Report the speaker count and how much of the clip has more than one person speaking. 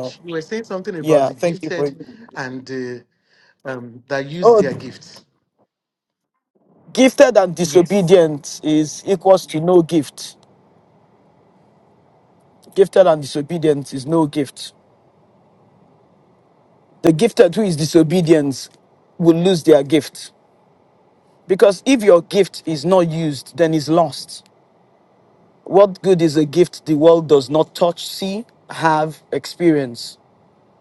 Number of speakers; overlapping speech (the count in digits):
2, about 5%